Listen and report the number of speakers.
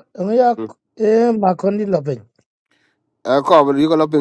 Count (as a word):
two